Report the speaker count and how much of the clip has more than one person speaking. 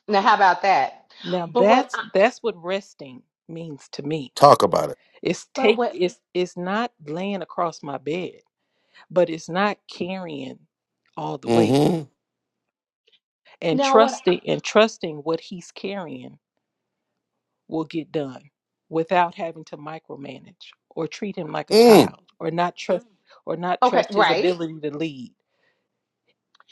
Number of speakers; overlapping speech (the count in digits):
3, about 11%